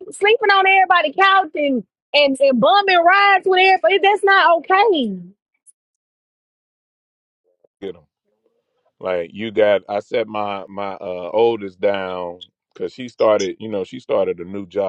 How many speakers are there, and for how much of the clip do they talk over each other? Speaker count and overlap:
2, no overlap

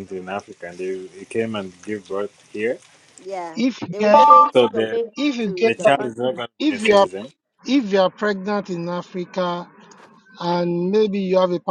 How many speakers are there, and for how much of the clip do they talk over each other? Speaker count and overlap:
3, about 19%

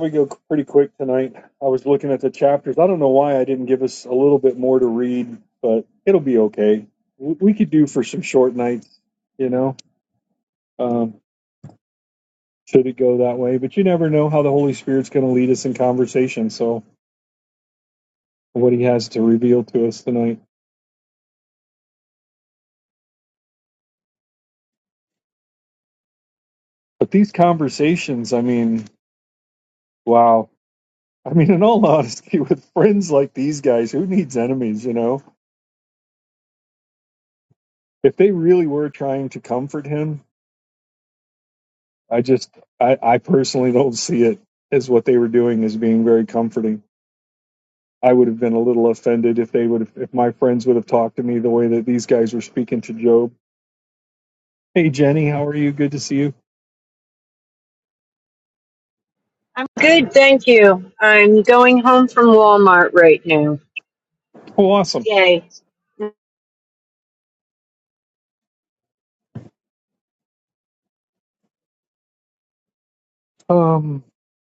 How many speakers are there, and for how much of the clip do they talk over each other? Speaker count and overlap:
2, no overlap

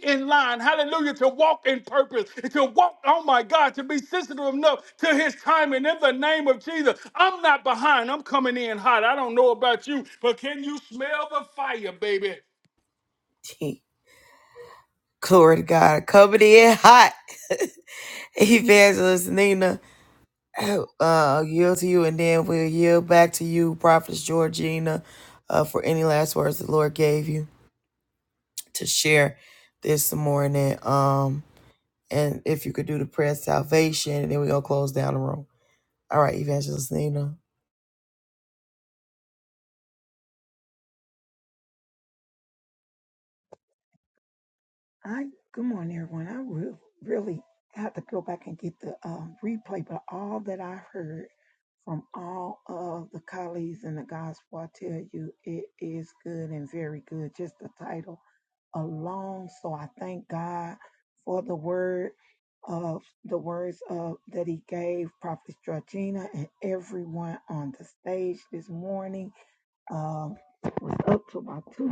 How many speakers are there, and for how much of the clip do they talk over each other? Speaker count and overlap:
3, no overlap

